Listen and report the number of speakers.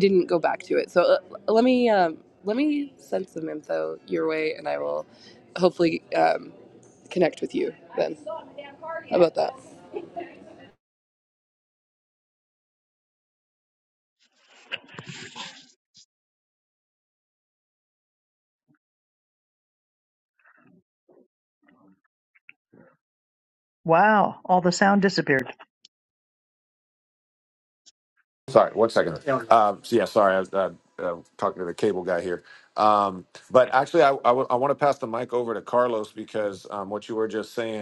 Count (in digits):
3